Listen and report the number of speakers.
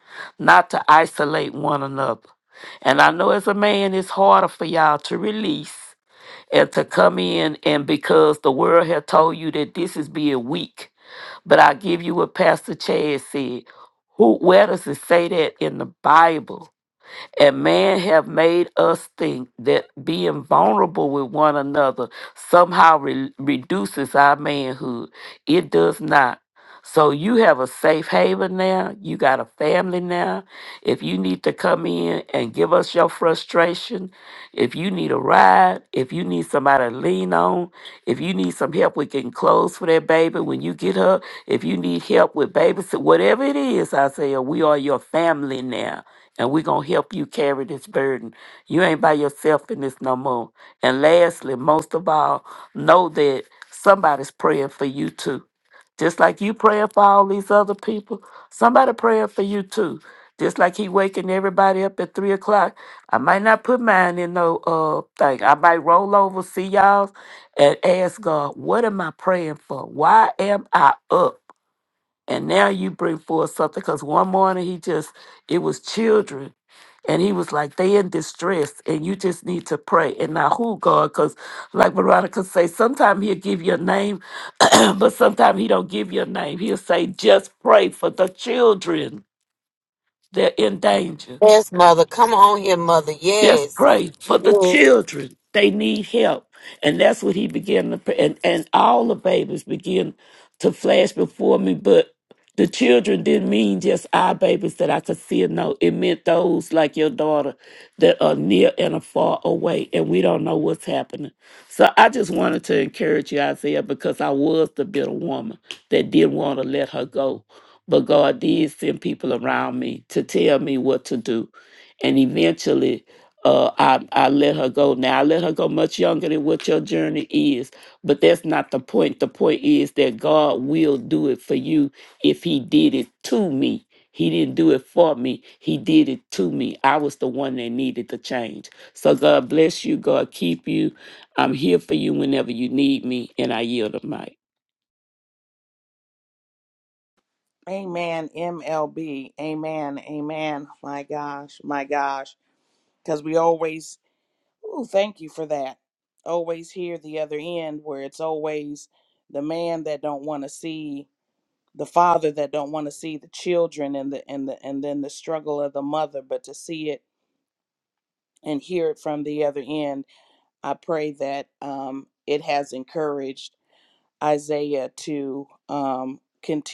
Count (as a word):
three